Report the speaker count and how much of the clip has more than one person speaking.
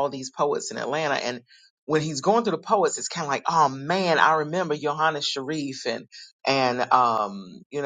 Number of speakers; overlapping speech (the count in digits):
1, no overlap